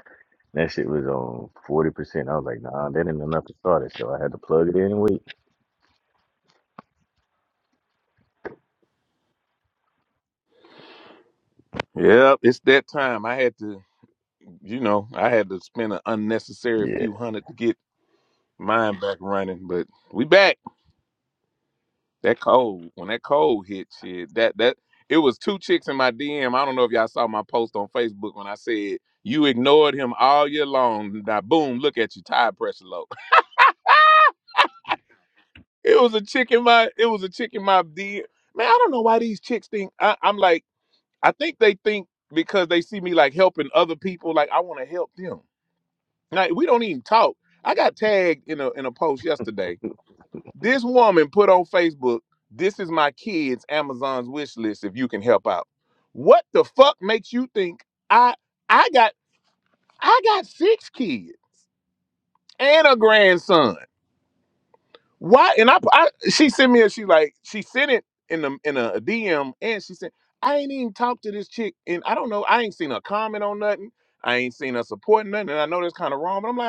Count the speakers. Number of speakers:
2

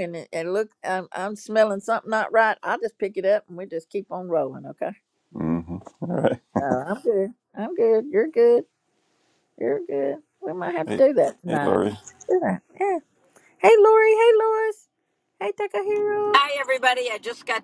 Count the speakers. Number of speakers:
3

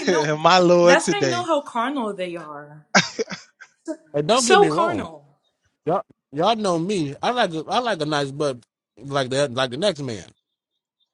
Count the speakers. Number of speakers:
3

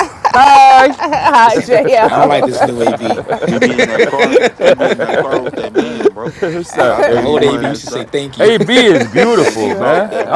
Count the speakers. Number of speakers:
4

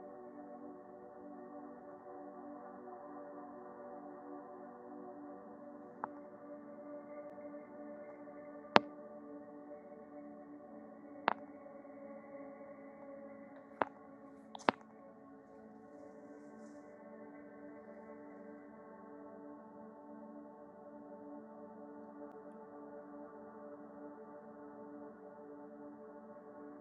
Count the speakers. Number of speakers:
0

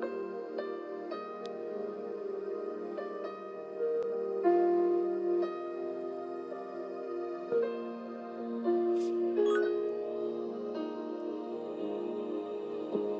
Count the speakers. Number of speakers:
0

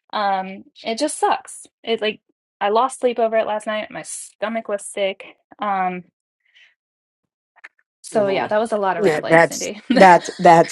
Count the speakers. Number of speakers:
2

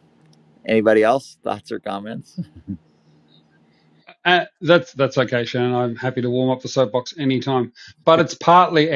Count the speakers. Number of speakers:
2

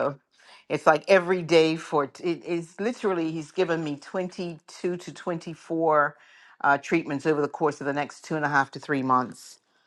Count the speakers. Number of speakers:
1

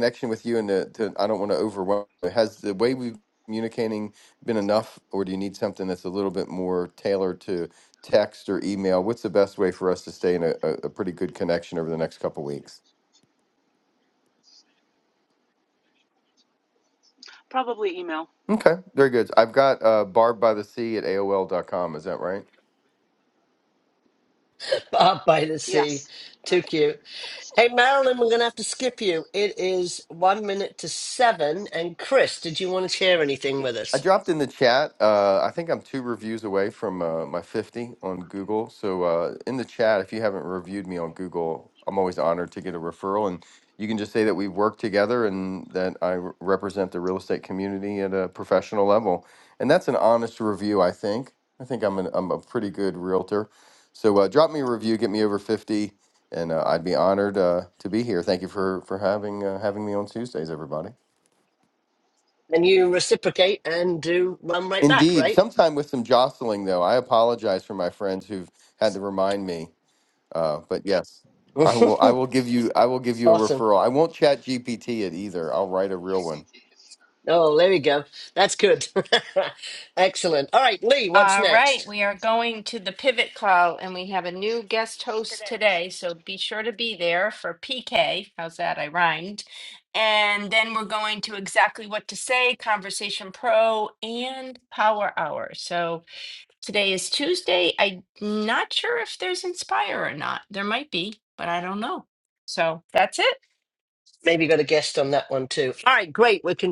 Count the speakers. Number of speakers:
4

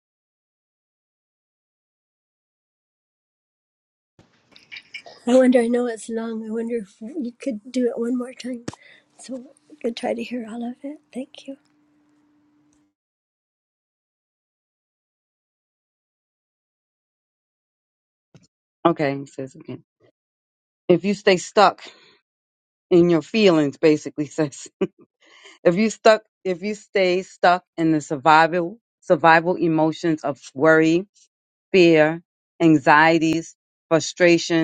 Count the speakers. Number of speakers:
2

